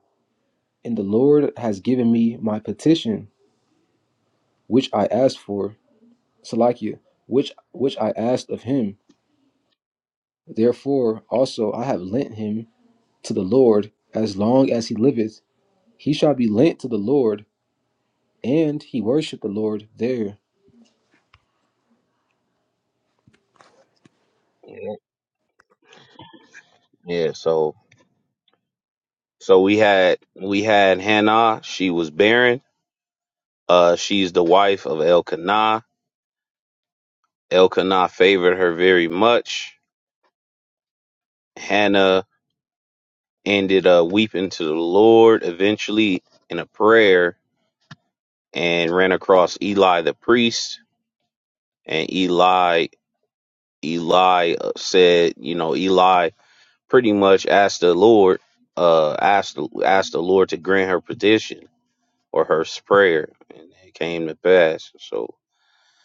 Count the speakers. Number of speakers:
2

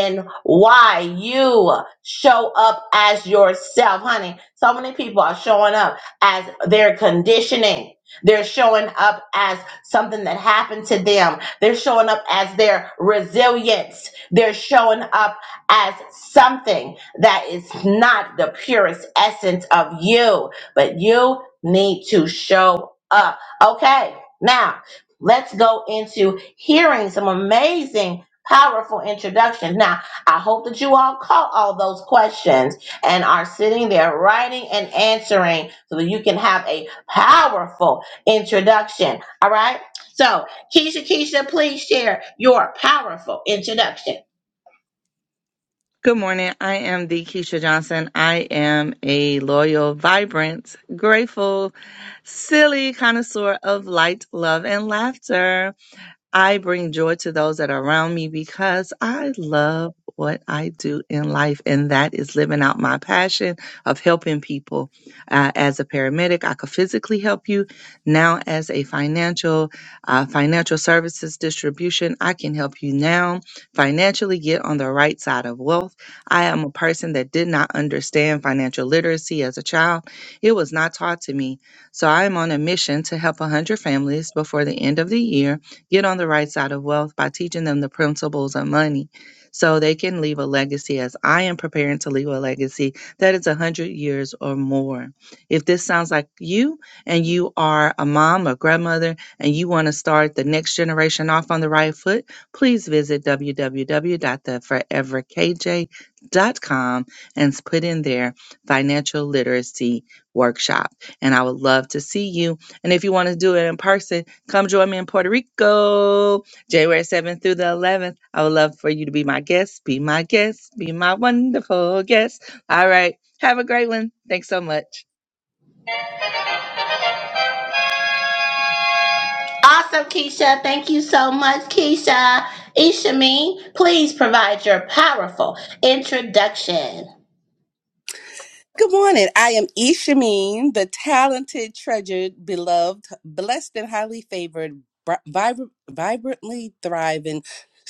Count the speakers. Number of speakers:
3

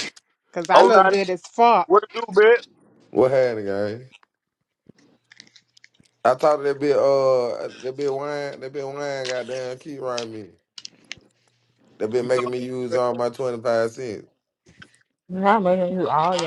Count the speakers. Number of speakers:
4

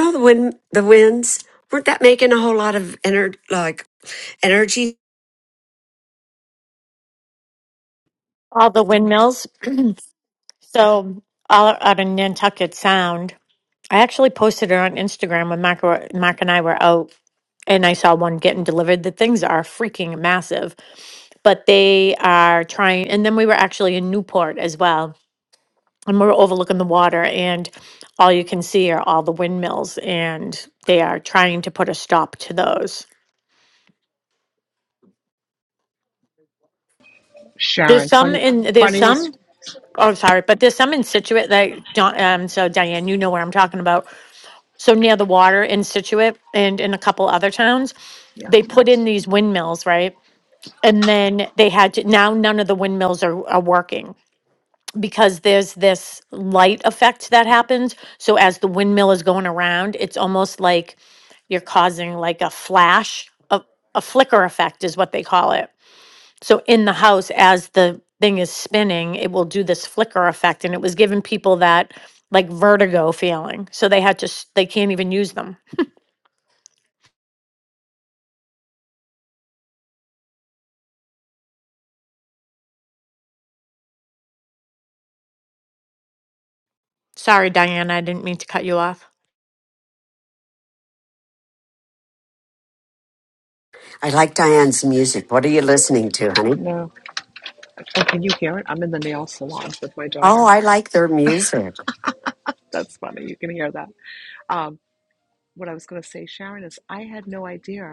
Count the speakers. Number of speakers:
3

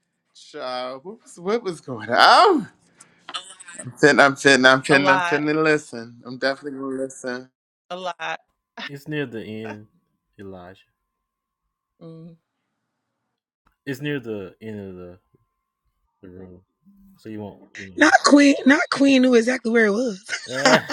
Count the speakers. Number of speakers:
4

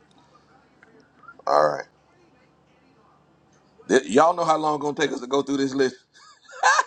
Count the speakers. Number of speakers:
1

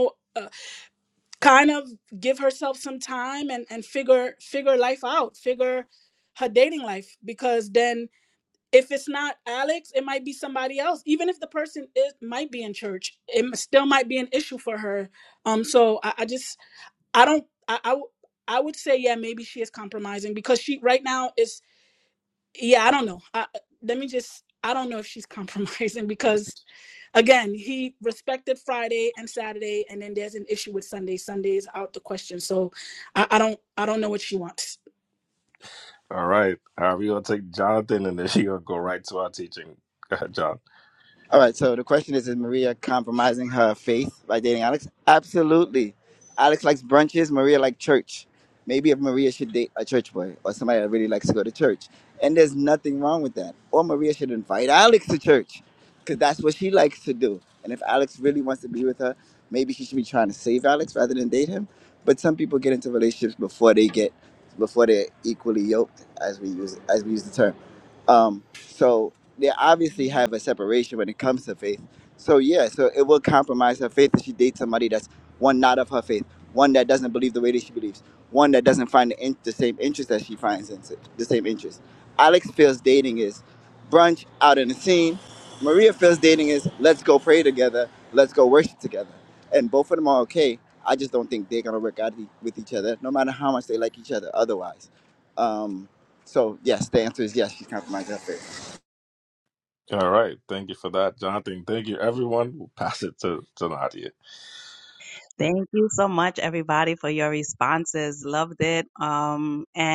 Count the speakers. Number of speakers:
4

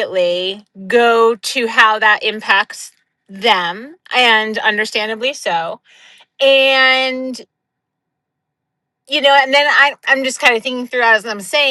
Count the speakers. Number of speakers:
1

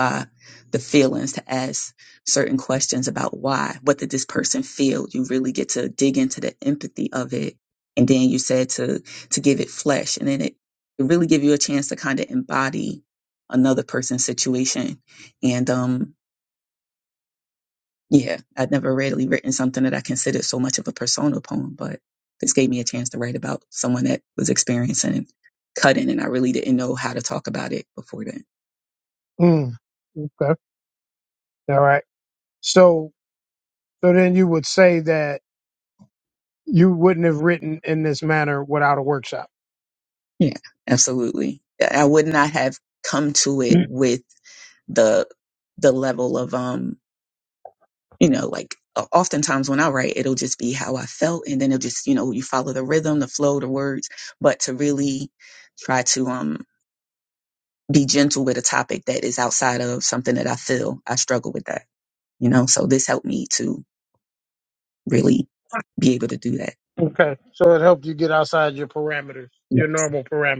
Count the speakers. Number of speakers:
2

